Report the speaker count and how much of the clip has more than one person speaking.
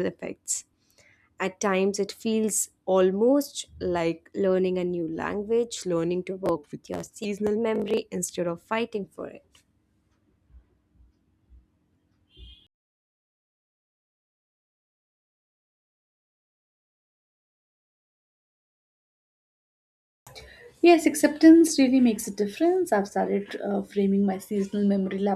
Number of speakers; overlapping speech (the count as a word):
two, no overlap